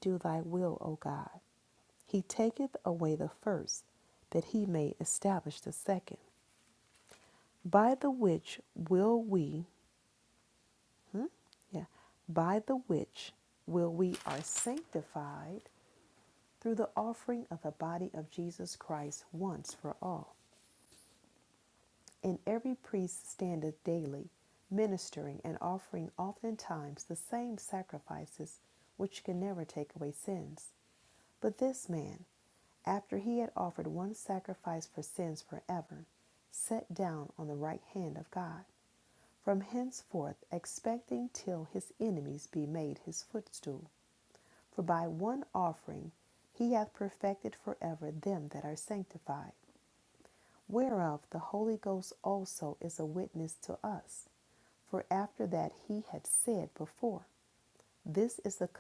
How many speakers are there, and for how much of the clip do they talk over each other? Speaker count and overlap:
one, no overlap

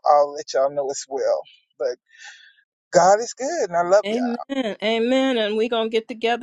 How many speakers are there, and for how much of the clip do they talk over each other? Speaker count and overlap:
two, about 5%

